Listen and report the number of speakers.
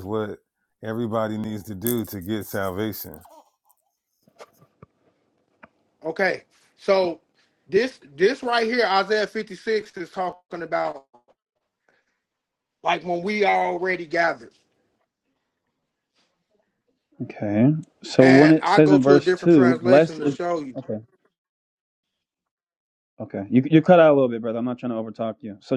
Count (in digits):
3